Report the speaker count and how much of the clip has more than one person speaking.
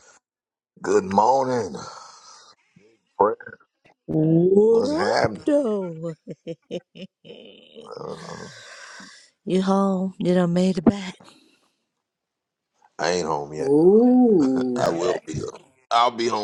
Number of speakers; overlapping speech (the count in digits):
3, about 9%